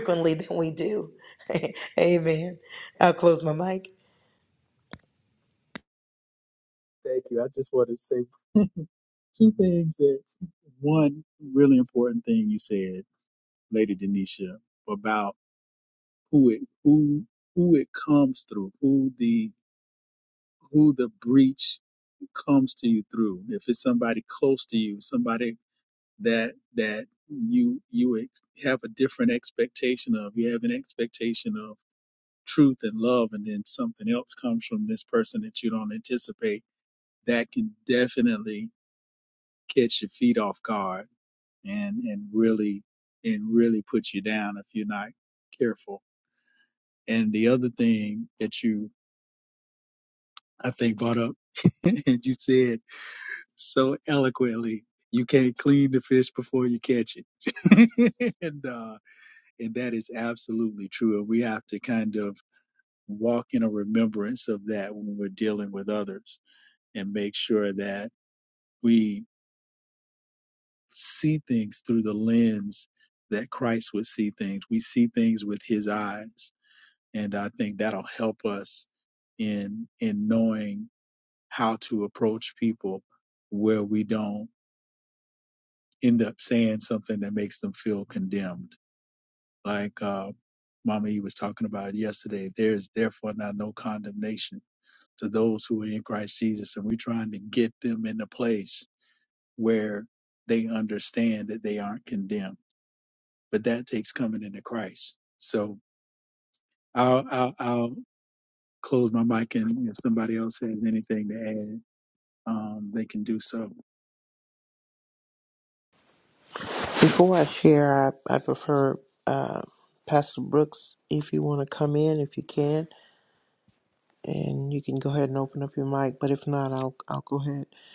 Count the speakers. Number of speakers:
3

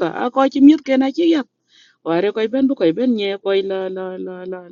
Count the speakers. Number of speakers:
1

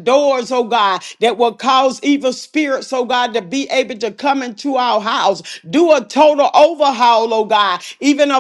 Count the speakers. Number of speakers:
1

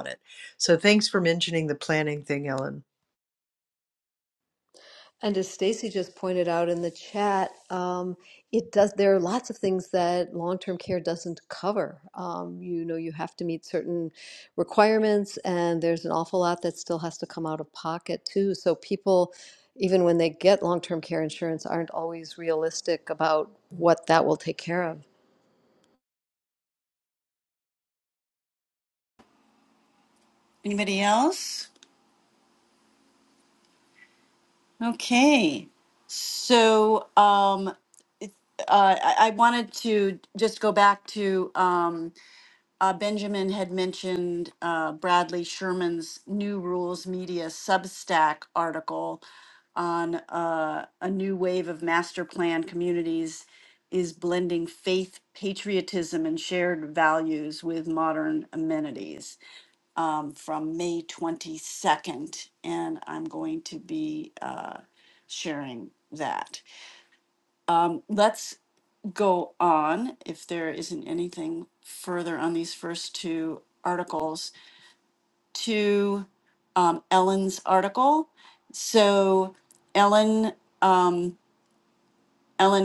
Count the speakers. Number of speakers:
3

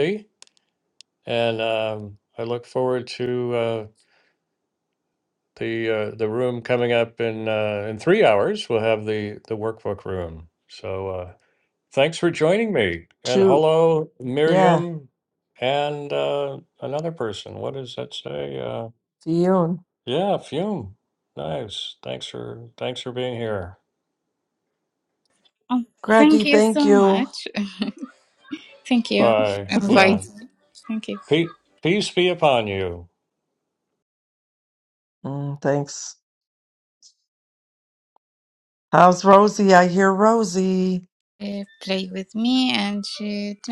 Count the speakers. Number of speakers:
3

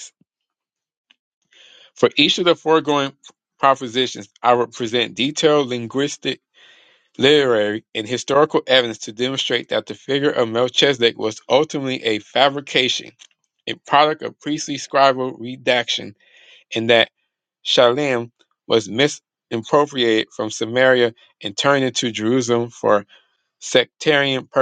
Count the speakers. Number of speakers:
1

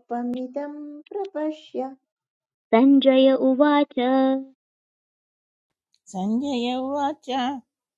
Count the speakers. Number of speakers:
3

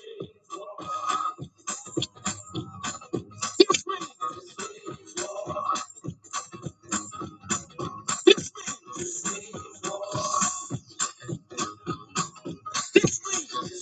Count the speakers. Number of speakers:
0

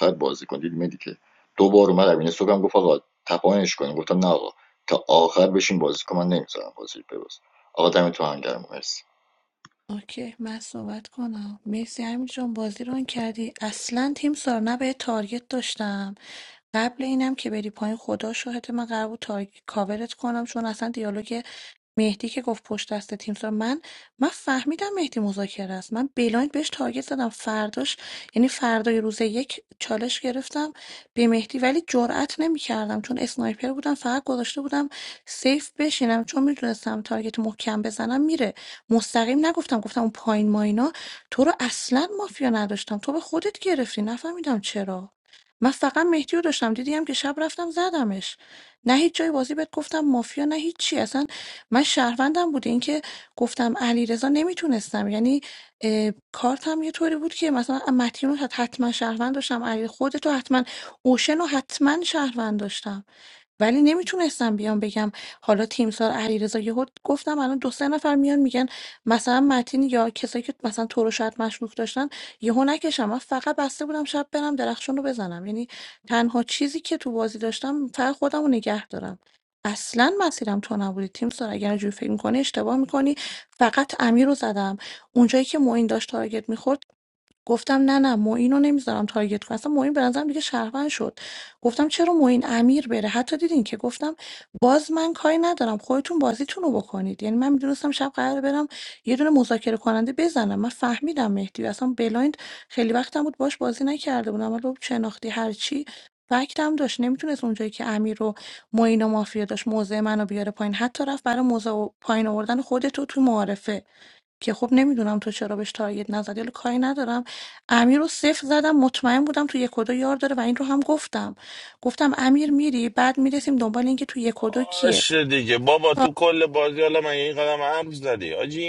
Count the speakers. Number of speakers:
3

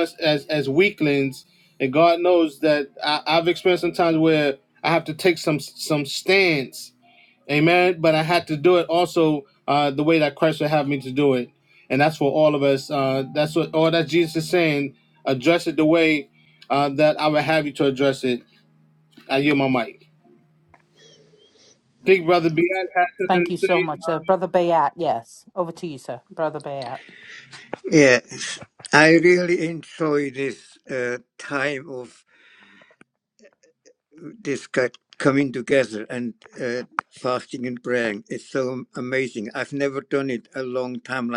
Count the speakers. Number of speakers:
3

